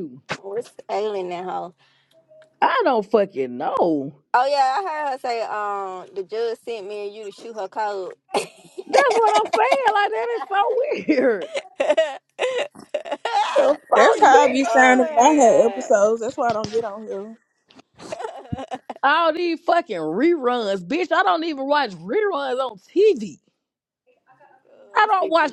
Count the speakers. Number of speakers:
3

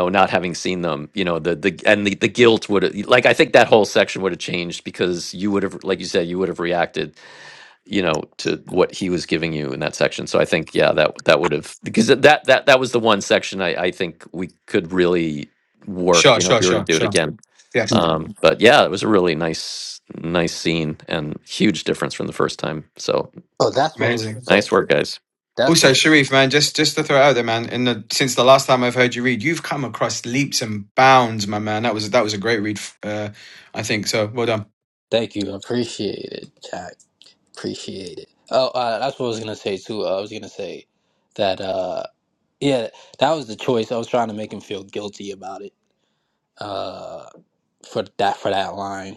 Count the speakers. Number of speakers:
3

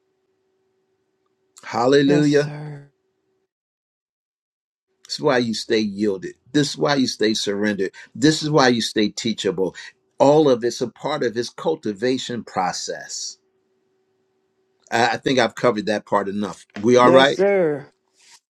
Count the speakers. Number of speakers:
2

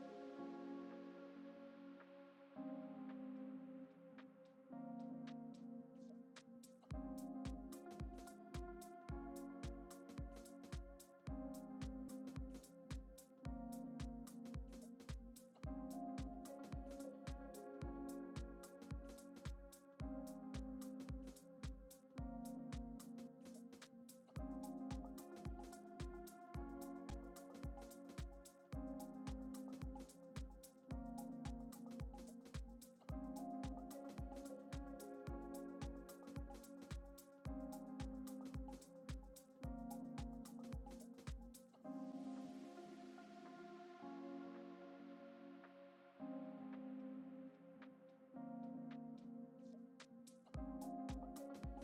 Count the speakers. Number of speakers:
0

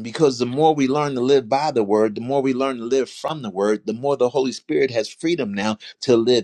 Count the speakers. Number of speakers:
1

